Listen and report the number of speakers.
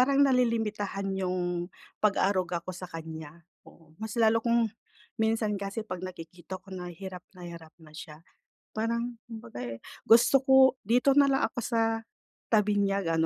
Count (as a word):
one